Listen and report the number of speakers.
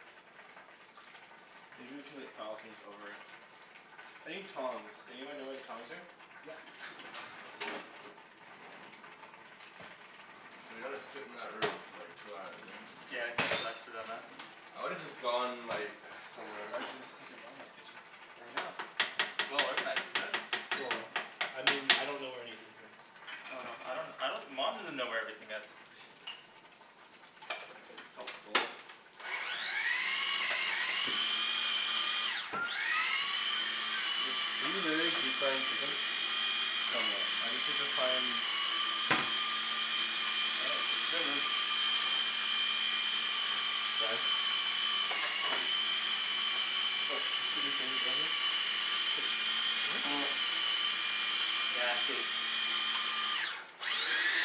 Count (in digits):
3